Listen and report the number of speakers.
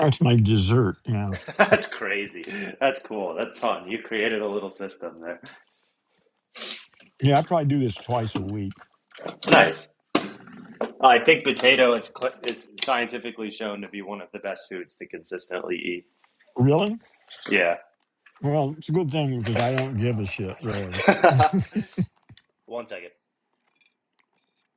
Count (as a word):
two